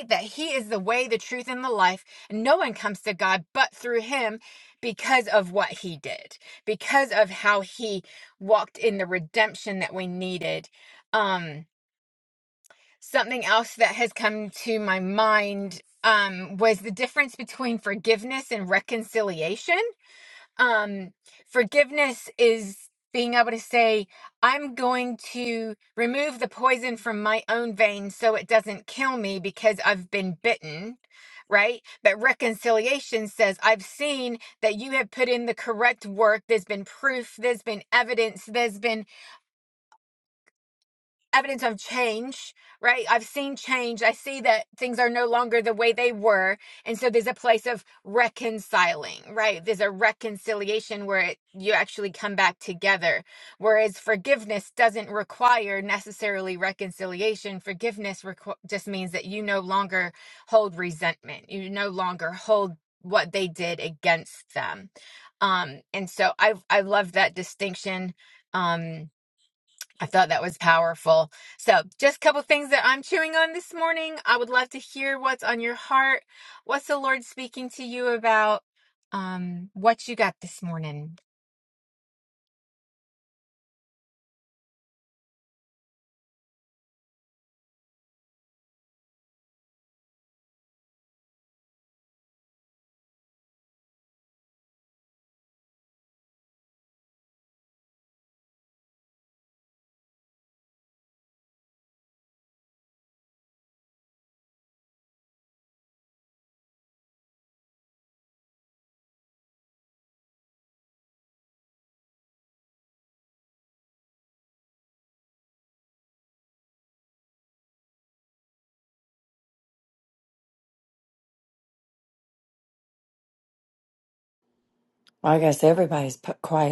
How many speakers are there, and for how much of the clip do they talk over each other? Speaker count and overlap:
two, no overlap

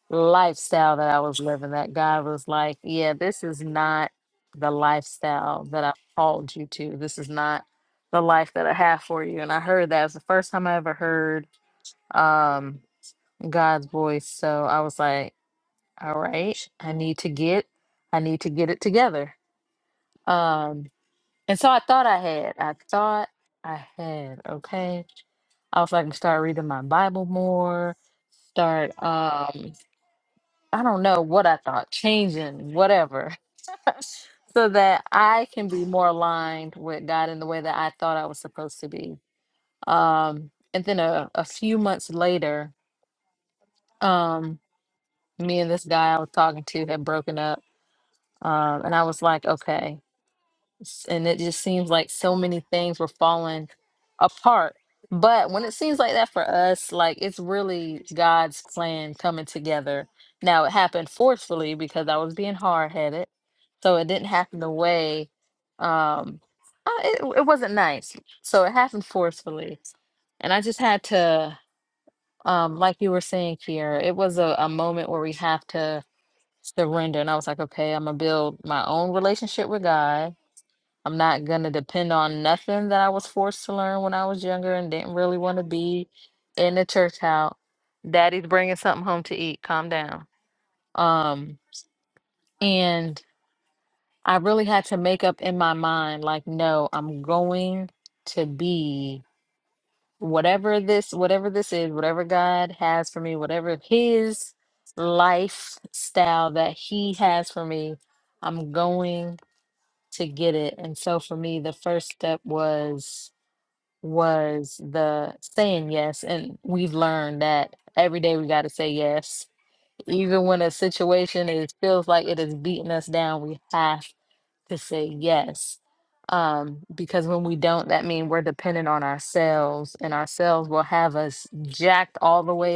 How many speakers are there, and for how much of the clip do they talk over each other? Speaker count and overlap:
one, no overlap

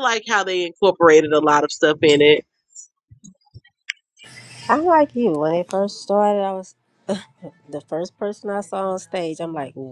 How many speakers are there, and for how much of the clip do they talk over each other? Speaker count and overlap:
two, no overlap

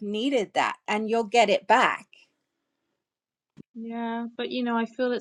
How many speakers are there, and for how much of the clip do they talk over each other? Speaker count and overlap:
two, no overlap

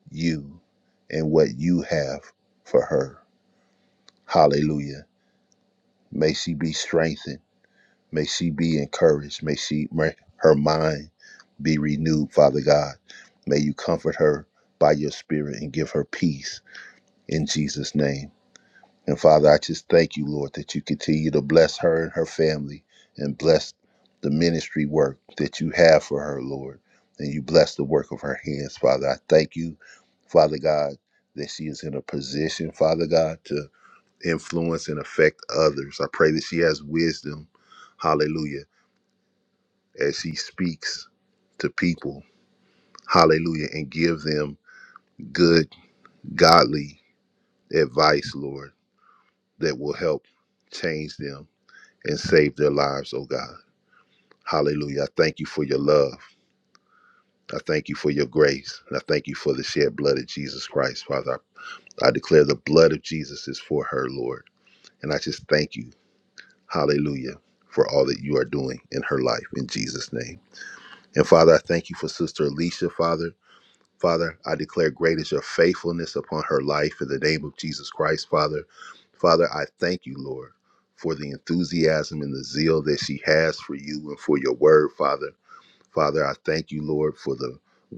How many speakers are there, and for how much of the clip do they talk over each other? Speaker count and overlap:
one, no overlap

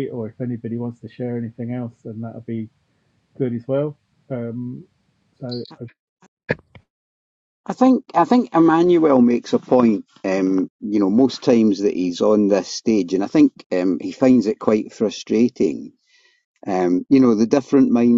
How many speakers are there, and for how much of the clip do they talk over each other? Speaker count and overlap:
two, no overlap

